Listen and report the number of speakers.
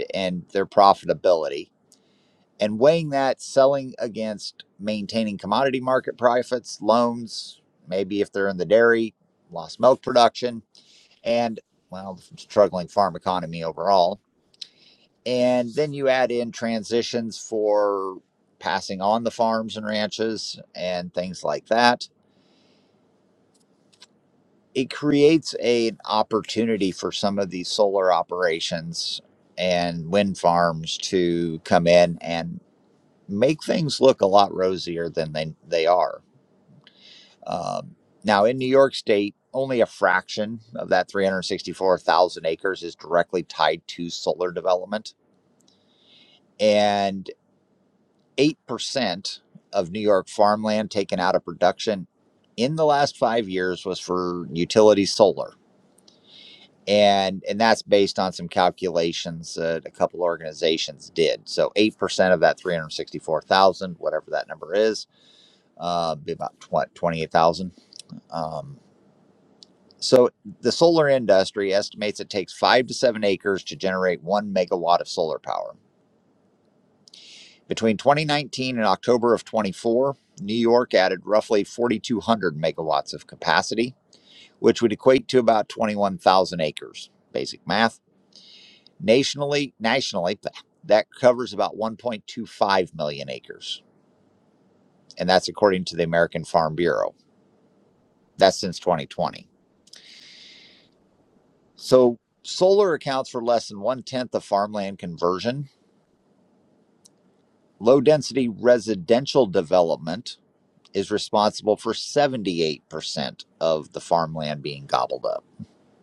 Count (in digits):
1